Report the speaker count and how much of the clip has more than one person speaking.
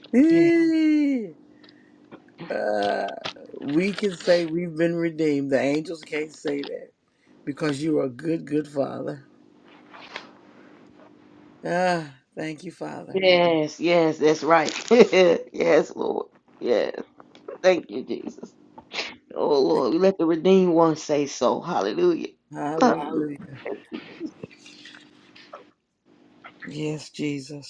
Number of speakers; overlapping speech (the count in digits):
2, about 2%